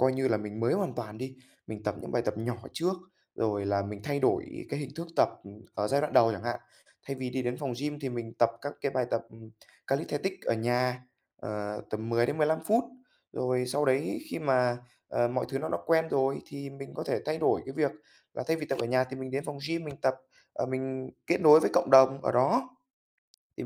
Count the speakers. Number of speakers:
1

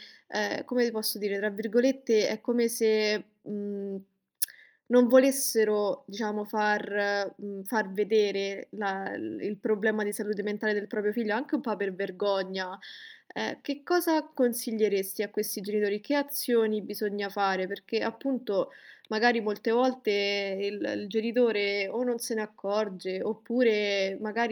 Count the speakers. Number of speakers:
1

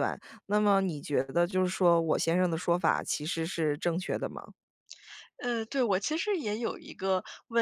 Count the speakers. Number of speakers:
2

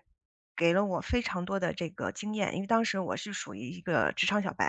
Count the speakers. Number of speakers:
1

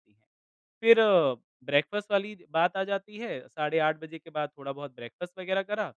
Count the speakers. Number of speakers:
1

